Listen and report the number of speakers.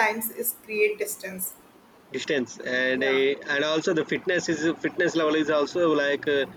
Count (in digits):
2